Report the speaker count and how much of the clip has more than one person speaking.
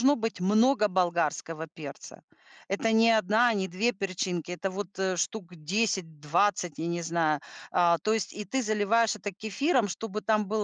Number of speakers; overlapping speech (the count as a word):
one, no overlap